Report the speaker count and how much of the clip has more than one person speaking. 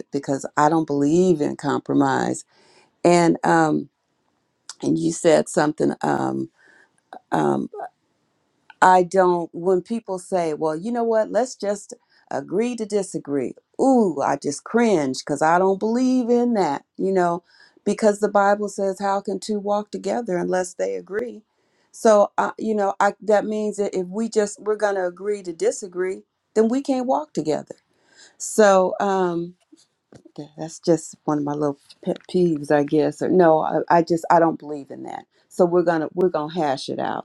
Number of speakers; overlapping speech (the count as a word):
one, no overlap